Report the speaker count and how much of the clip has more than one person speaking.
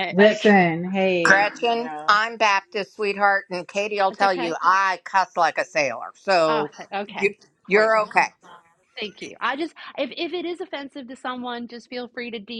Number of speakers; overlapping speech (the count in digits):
3, about 19%